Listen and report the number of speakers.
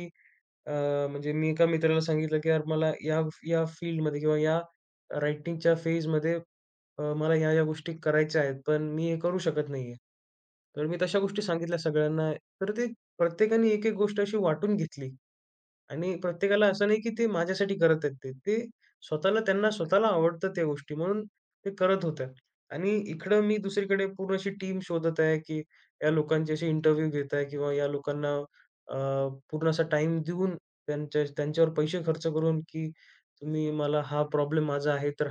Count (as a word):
one